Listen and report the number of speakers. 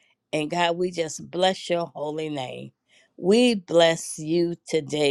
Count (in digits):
1